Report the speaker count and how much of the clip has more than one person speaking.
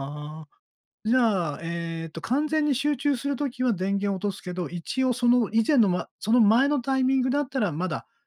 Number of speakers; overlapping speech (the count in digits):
1, no overlap